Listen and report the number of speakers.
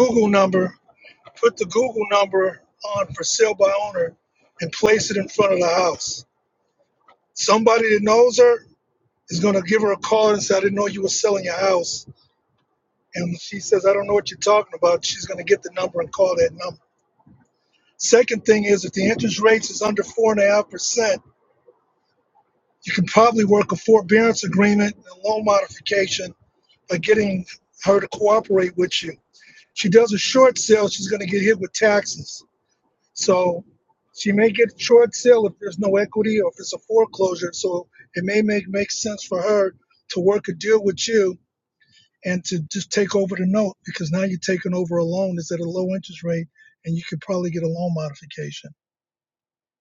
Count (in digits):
1